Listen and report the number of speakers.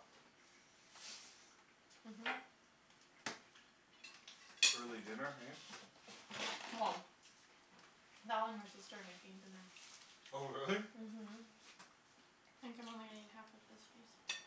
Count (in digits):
3